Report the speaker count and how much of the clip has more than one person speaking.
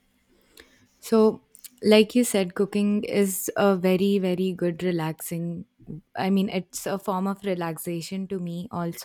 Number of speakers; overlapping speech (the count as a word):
one, no overlap